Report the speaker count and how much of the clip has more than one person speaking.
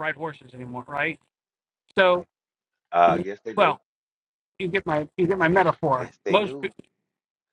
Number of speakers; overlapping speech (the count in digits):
2, about 12%